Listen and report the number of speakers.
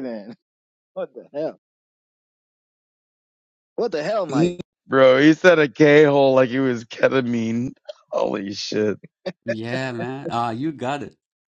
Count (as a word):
three